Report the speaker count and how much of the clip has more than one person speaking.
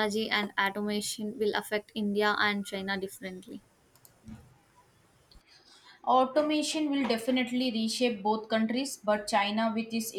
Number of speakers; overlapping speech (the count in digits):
2, no overlap